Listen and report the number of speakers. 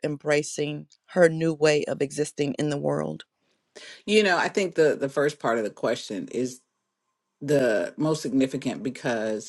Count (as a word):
two